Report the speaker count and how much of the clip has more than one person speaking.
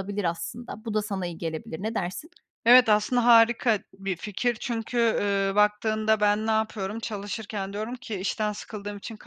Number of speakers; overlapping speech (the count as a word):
two, no overlap